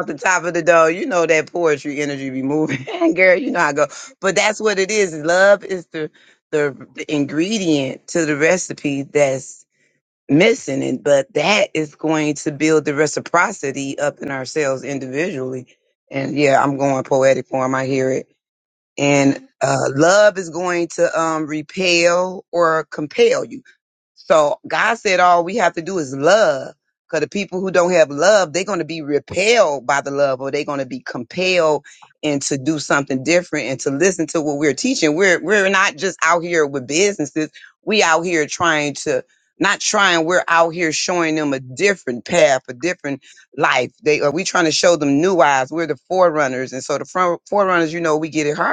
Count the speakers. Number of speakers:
1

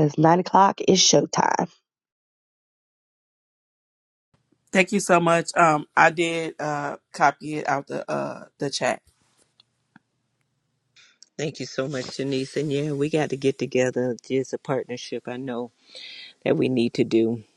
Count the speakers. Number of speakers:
3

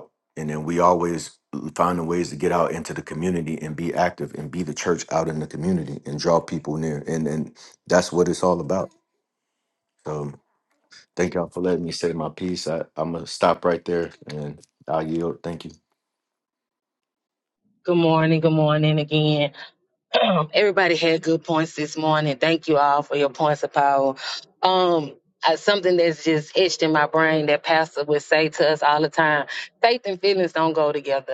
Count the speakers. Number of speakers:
2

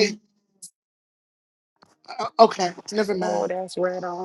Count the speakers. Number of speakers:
2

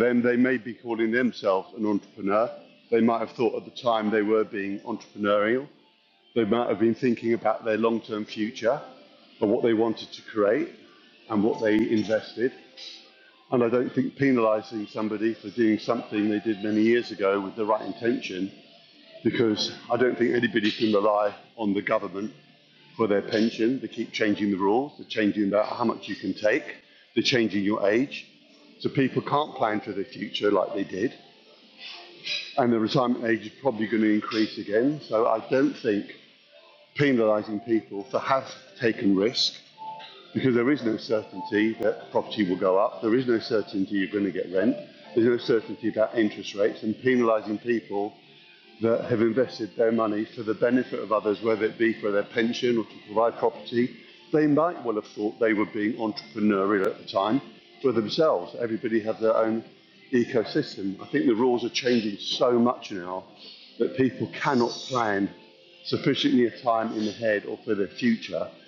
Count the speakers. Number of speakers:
1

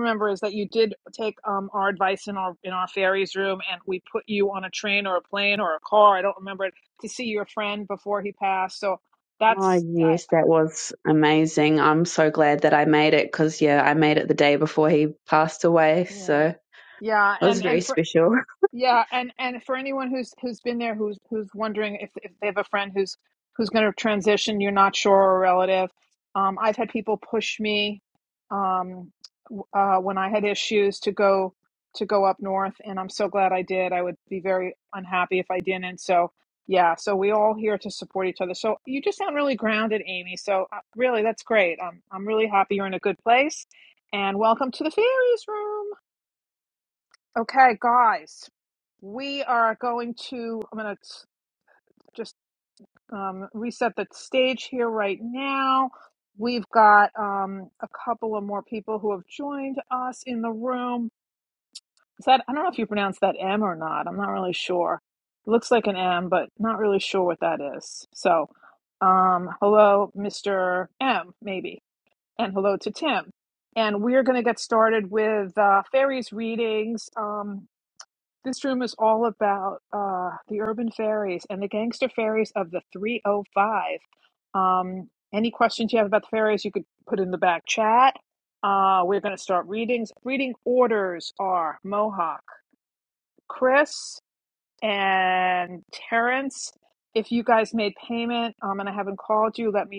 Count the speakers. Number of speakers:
2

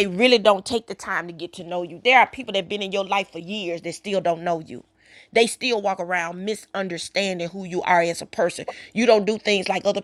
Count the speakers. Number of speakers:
1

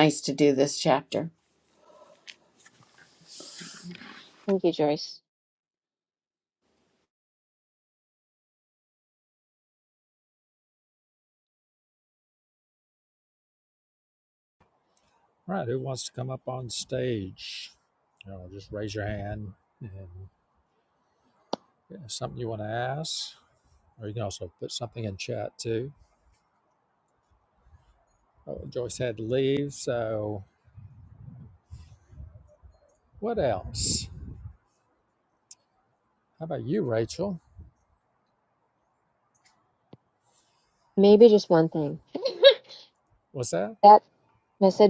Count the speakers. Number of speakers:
3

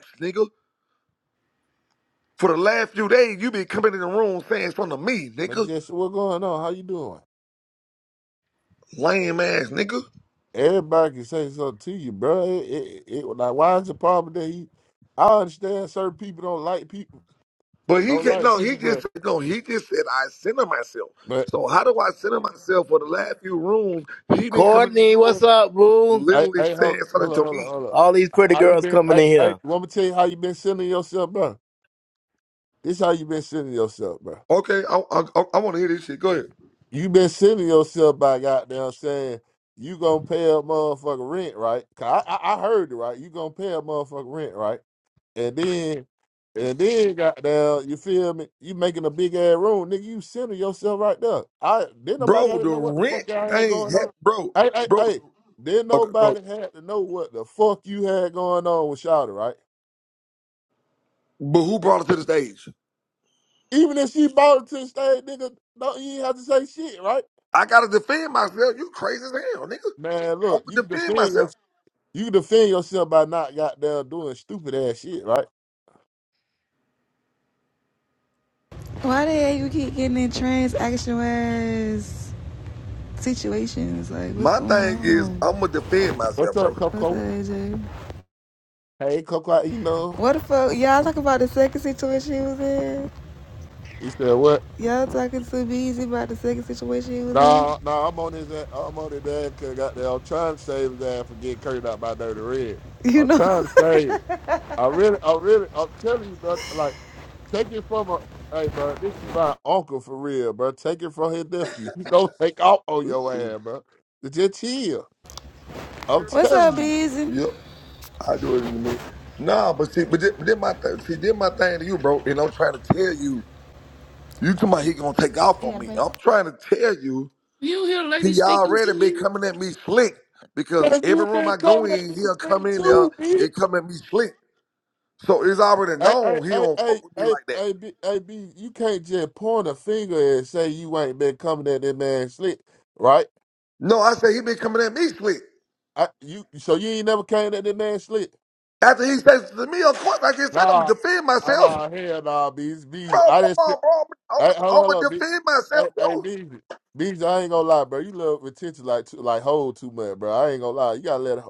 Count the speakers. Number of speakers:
5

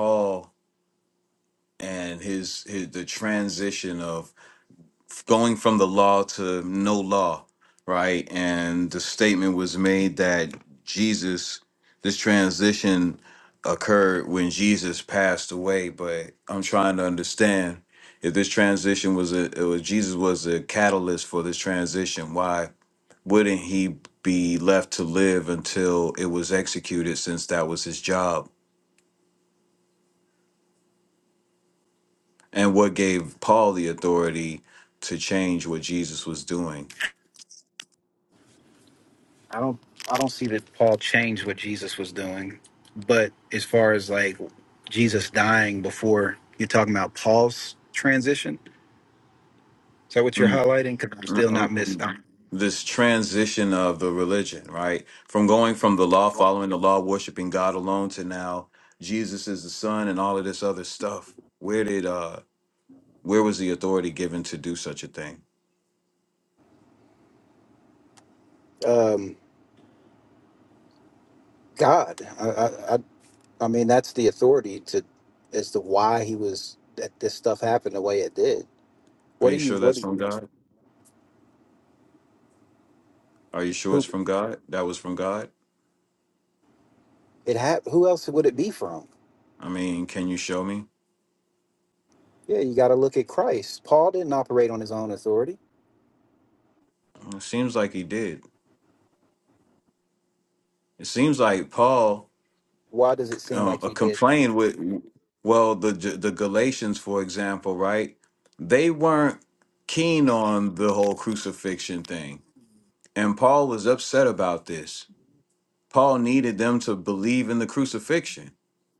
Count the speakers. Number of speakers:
2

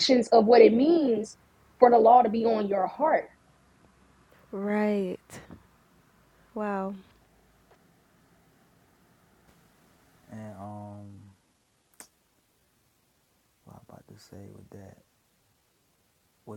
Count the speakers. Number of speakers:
3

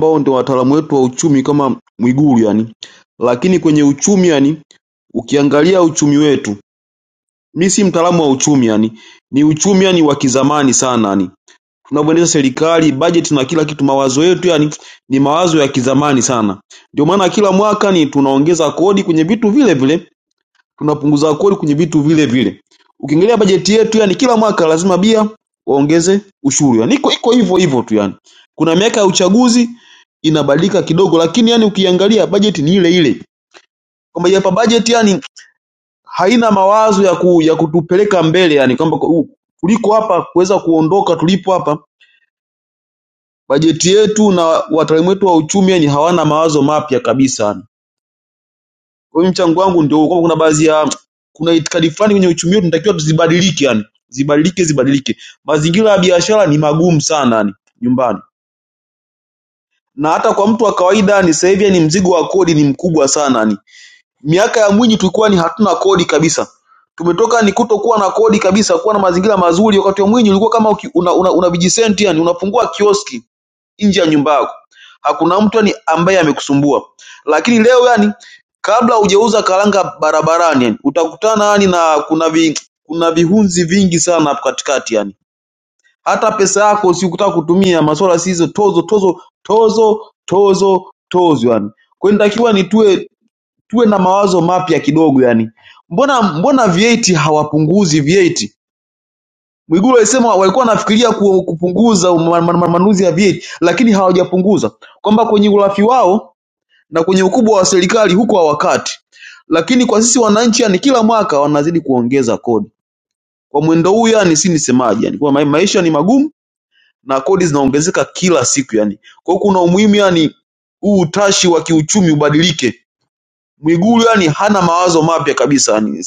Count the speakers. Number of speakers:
1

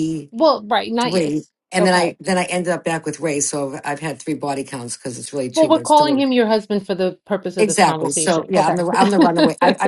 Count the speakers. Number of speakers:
2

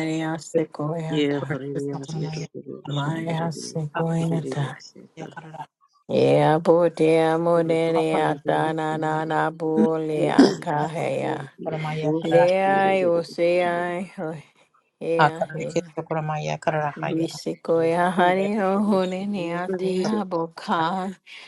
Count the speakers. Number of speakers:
3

